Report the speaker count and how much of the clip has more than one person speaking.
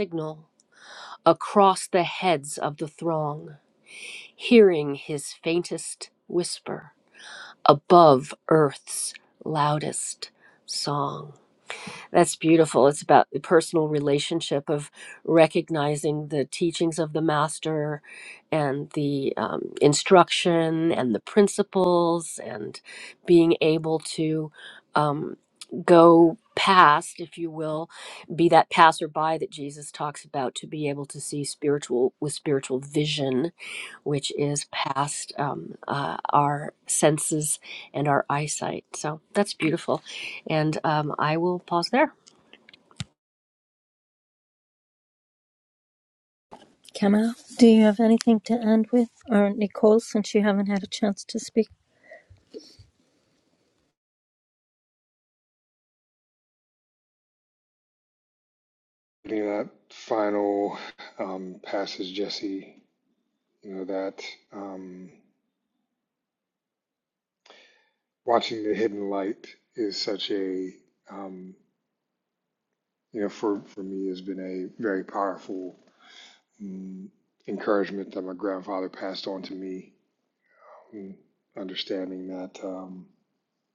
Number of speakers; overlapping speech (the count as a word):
three, no overlap